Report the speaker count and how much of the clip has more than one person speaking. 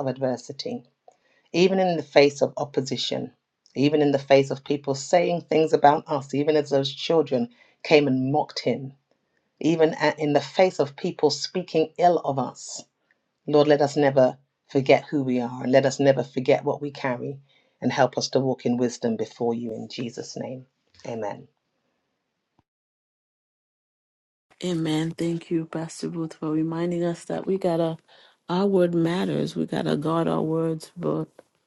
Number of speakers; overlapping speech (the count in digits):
2, no overlap